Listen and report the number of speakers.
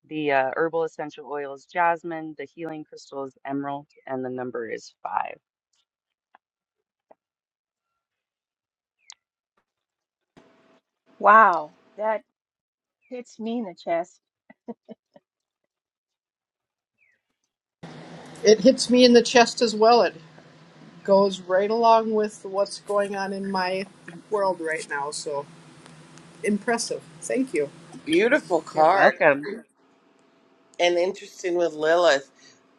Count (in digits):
4